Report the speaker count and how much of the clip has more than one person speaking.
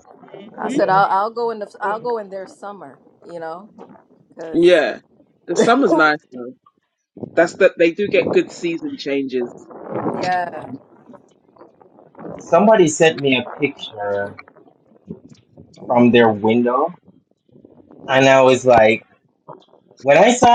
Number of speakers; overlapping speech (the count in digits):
3, about 2%